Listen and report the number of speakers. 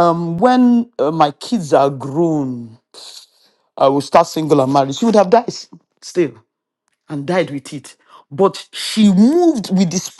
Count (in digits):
1